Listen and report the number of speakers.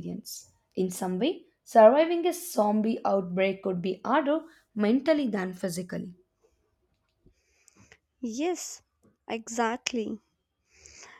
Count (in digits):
2